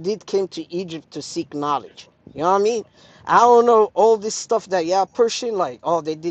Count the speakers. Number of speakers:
one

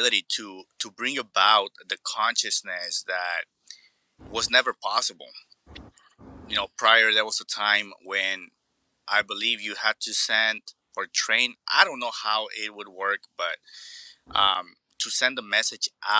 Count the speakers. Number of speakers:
one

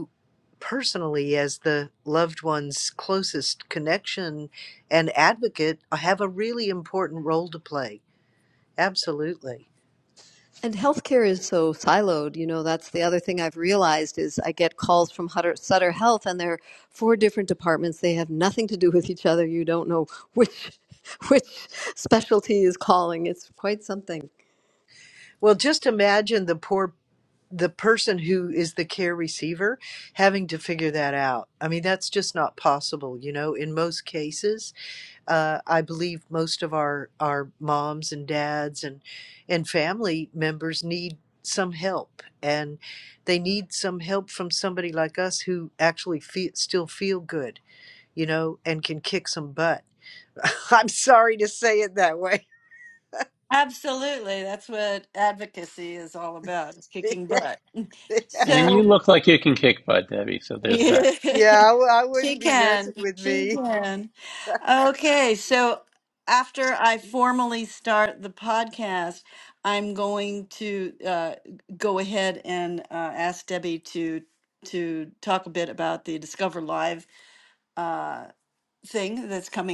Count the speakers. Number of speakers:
four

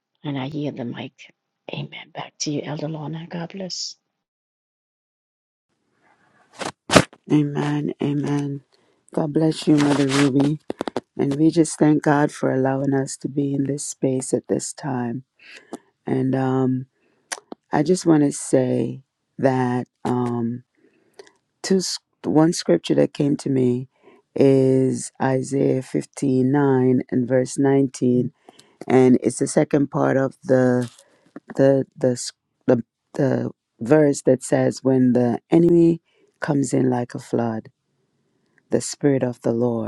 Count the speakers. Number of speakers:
two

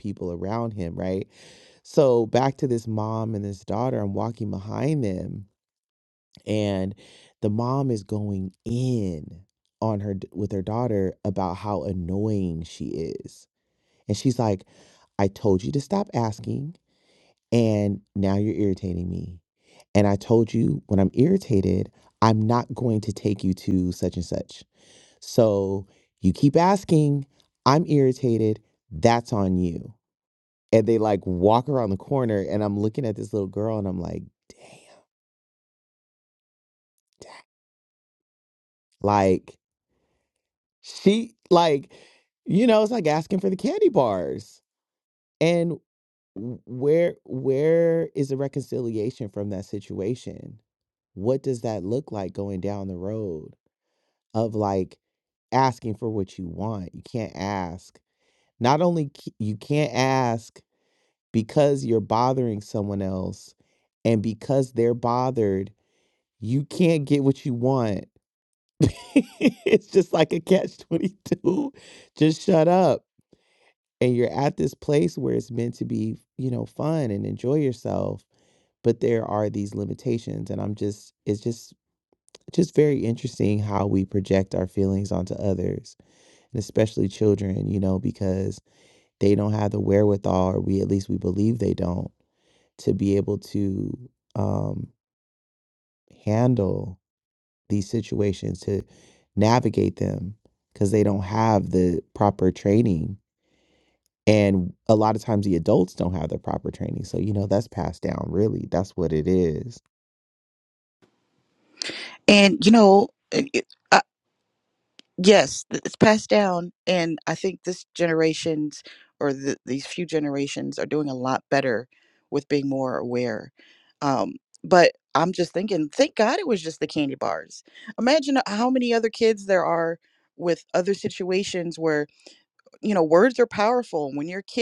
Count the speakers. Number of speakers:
two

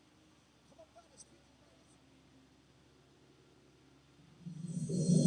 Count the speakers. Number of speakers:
zero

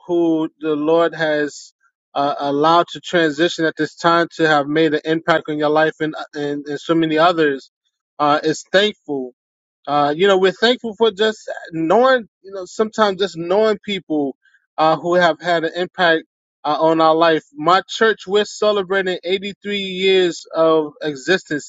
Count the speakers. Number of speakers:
one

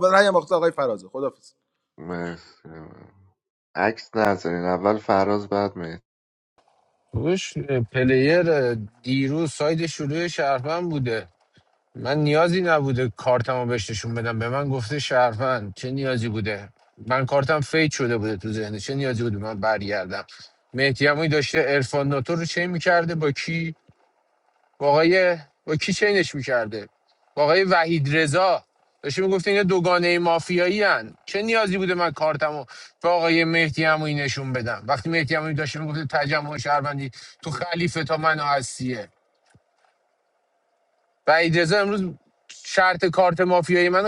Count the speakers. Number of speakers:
three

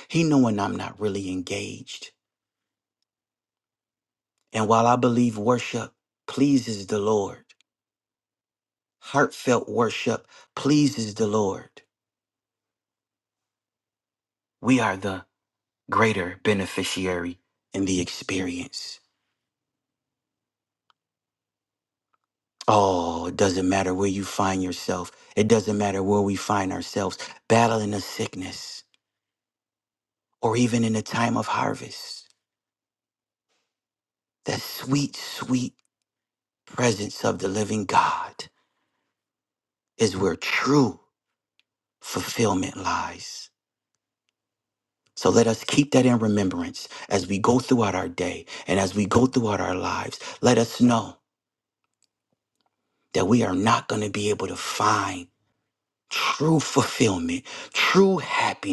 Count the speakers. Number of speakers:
one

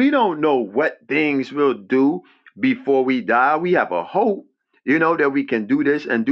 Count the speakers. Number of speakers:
one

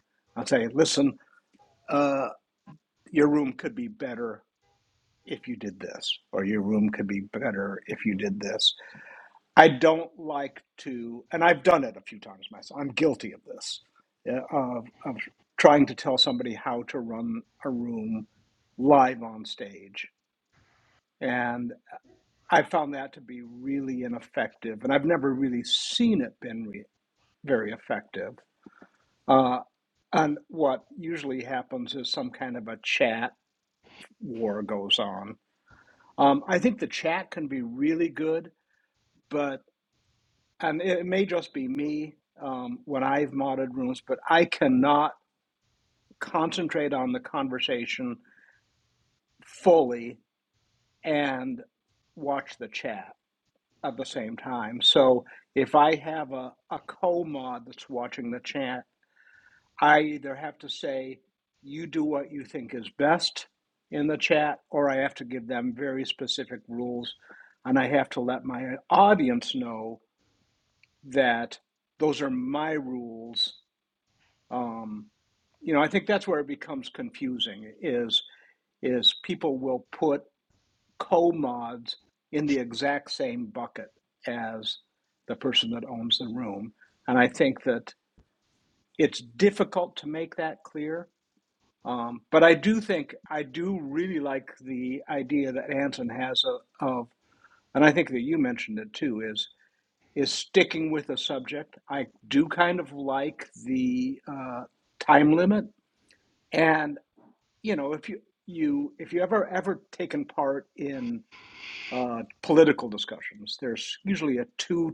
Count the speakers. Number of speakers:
one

